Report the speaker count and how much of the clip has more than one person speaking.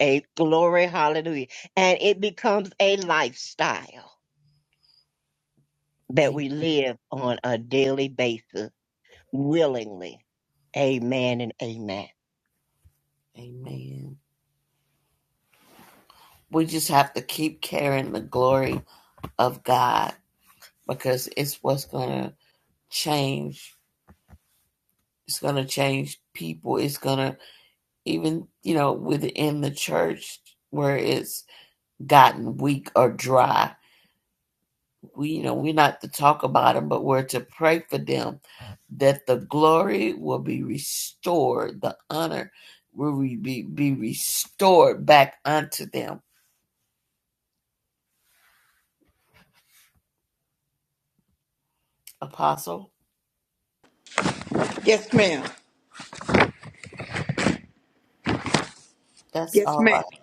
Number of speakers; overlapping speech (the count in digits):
3, about 1%